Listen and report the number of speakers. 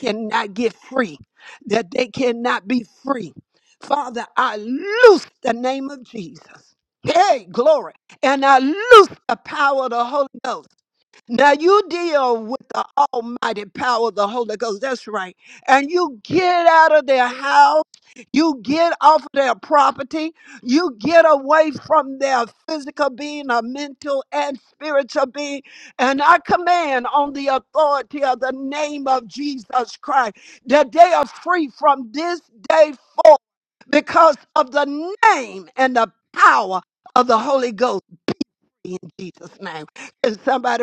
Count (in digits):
1